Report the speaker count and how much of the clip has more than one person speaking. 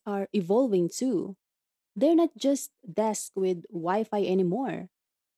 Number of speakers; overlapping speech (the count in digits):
1, no overlap